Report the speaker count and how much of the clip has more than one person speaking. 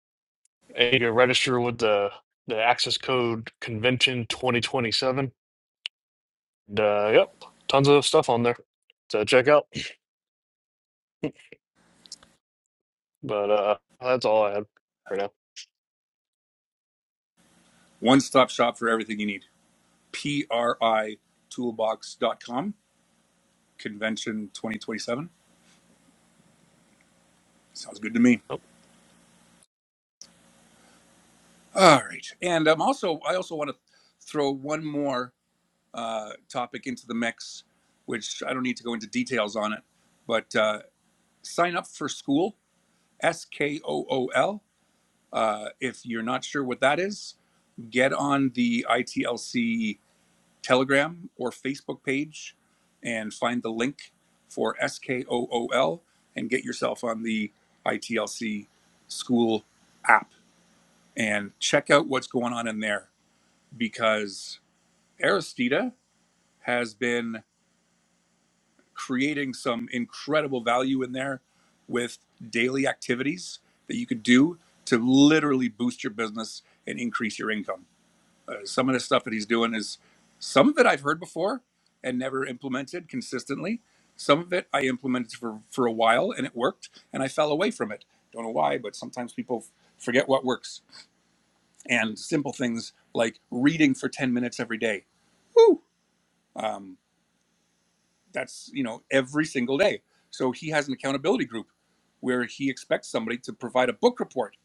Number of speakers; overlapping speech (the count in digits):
2, no overlap